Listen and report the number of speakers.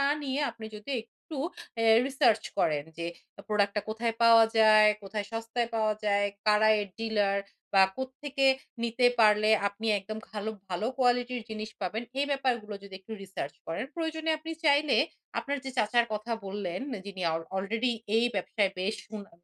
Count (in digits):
1